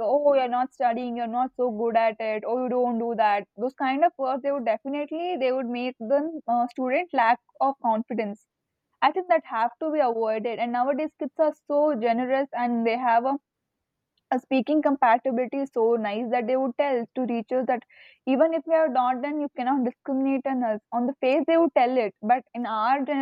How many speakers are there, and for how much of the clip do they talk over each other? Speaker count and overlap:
1, no overlap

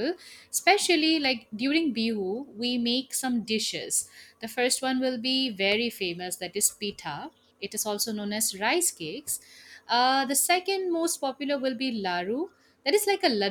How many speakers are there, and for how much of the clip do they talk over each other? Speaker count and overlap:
1, no overlap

